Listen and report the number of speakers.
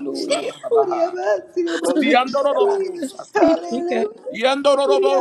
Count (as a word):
three